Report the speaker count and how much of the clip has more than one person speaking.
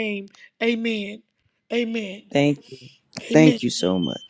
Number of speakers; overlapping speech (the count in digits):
2, about 6%